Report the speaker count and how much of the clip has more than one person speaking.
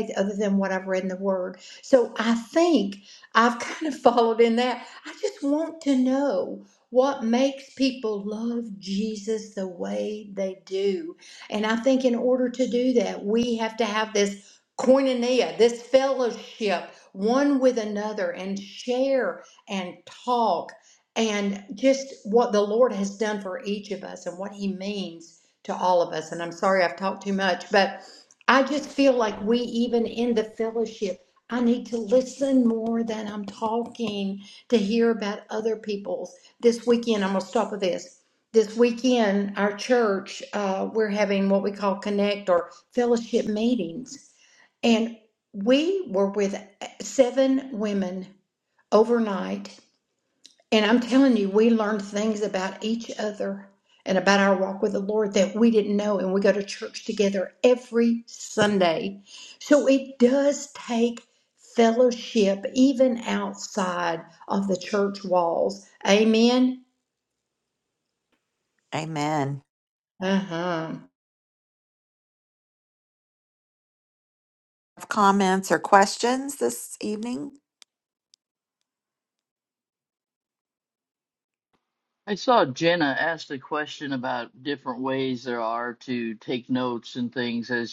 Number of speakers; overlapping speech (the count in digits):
3, no overlap